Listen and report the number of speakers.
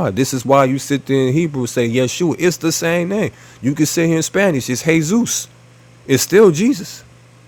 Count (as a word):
one